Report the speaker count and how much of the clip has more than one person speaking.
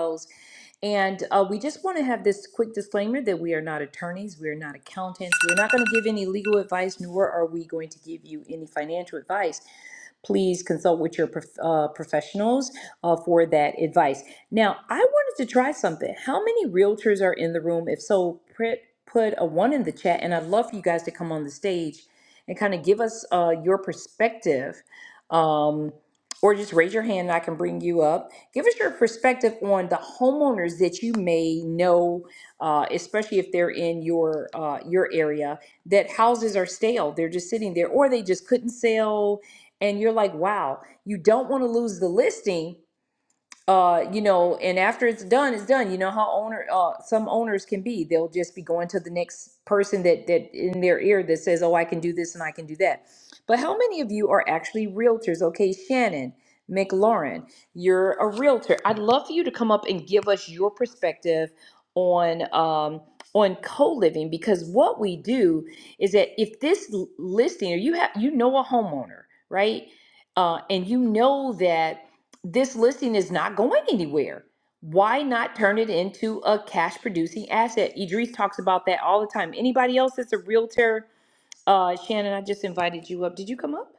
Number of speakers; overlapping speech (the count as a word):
one, no overlap